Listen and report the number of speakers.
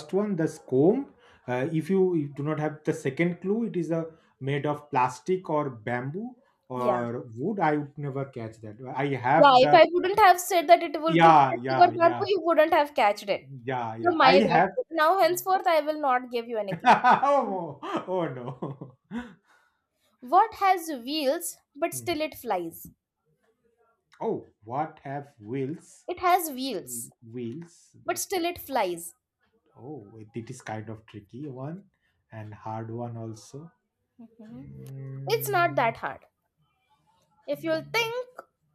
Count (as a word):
two